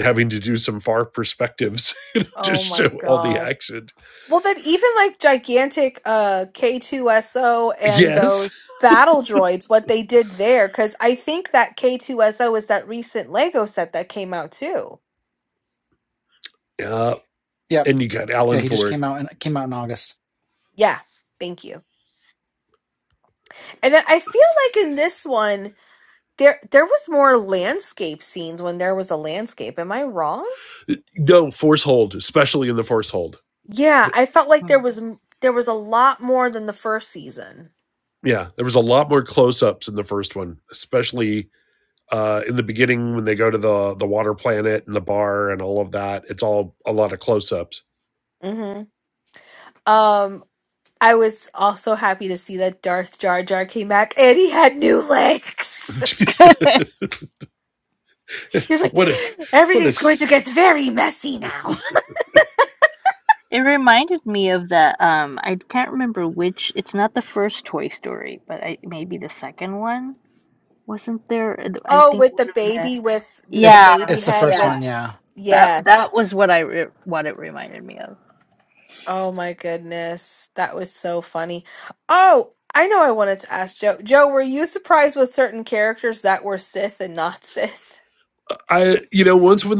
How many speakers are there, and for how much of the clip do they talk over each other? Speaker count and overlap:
four, about 6%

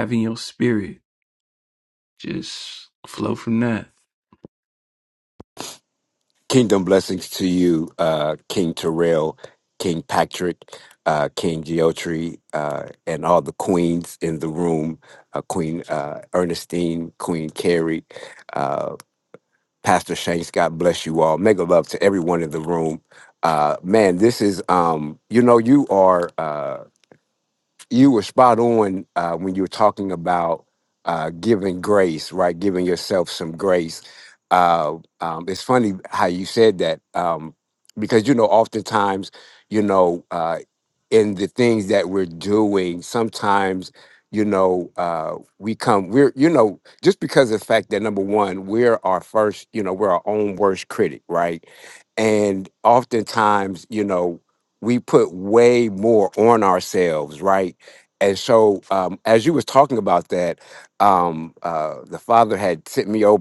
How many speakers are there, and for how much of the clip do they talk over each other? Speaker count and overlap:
two, no overlap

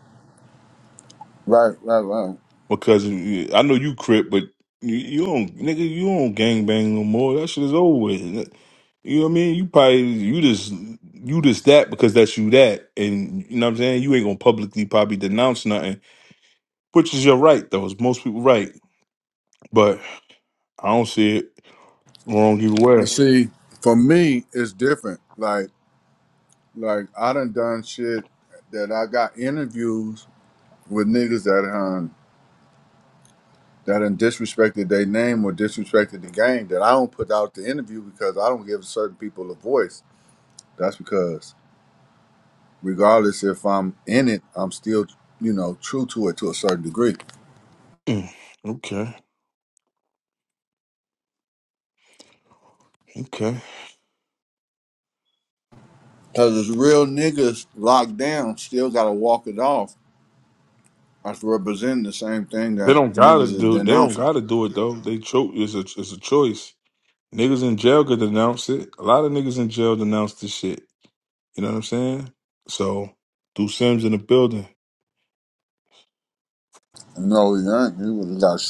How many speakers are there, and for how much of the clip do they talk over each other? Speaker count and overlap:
two, about 2%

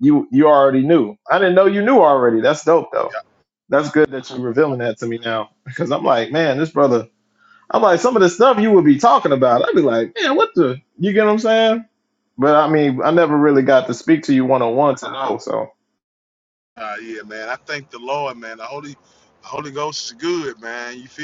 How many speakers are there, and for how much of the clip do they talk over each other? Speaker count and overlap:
two, under 1%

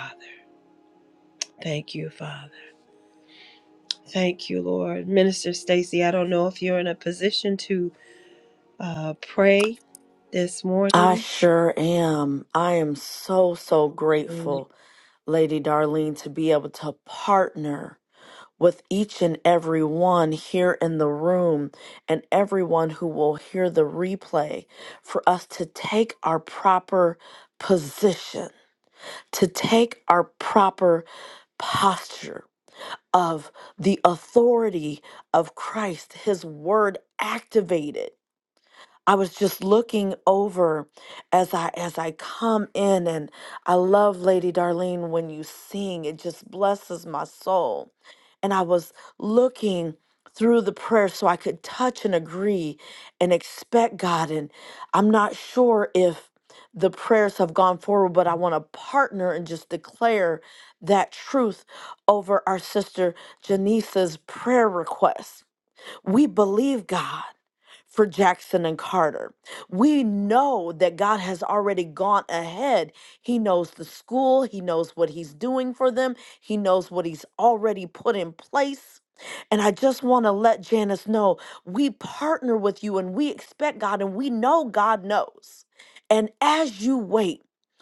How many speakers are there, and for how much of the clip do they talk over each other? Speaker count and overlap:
two, under 1%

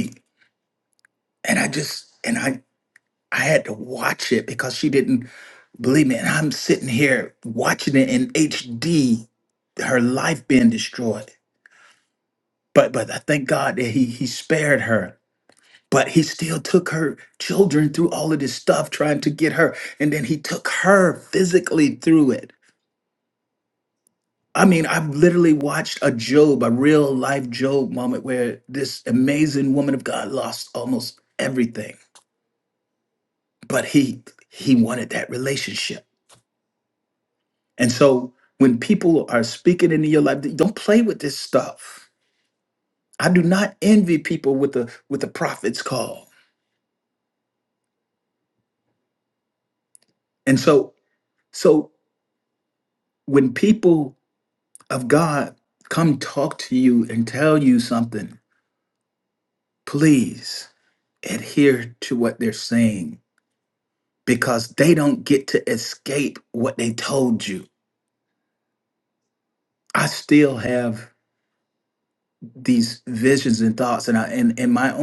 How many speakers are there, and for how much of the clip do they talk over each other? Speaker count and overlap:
one, no overlap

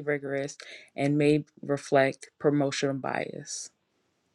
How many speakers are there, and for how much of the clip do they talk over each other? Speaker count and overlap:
one, no overlap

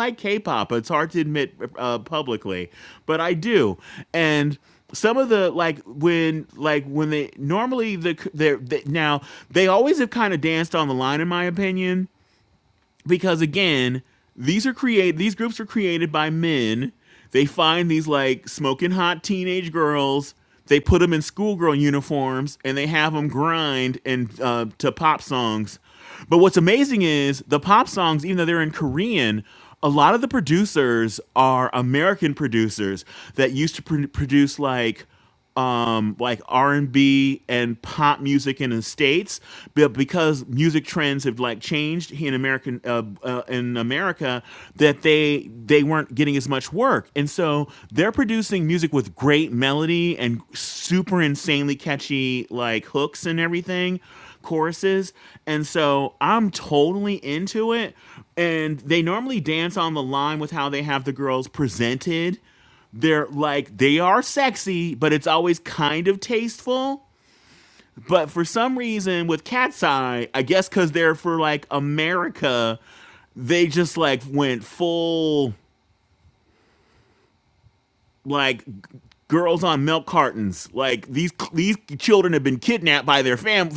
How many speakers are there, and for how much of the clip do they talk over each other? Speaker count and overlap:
one, no overlap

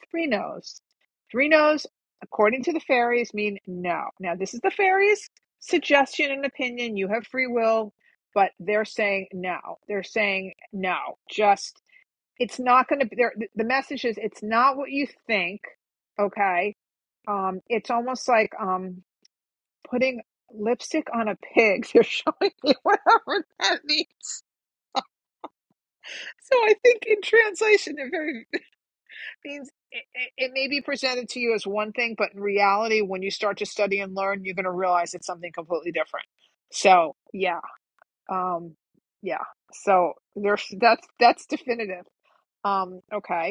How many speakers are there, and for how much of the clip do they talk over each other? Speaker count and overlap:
one, no overlap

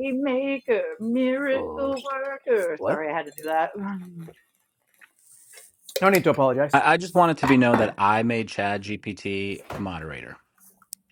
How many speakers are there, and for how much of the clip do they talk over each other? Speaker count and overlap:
three, about 5%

